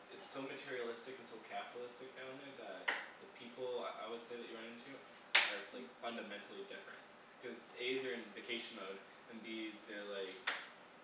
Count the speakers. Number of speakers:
1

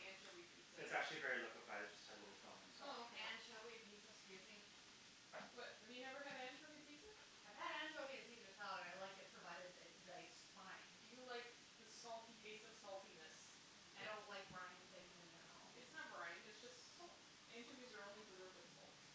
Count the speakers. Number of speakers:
3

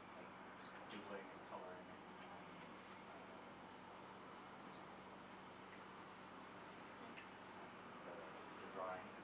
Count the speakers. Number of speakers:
1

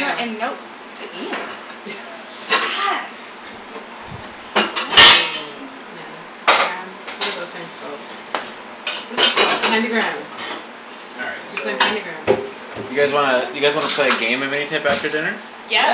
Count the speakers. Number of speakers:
4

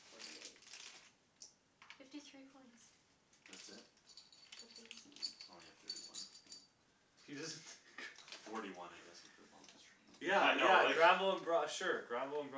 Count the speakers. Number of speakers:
3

